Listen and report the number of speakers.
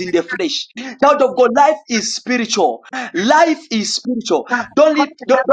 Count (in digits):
1